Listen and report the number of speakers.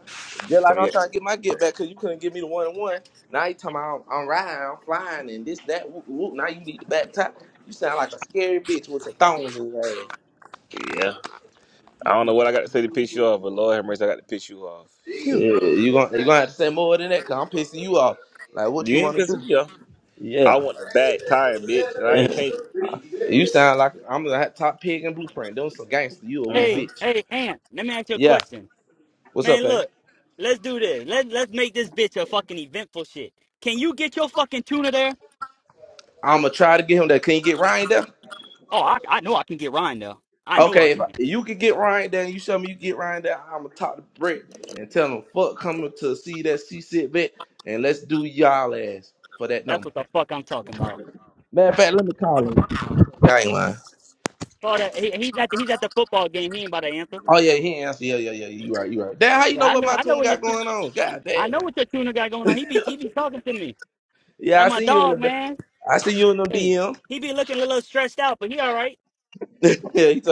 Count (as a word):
three